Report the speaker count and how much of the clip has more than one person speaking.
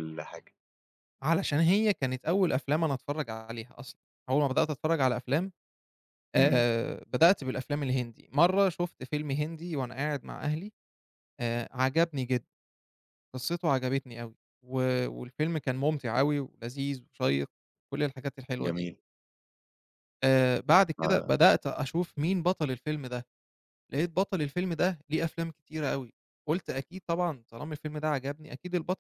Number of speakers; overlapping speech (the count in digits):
2, about 3%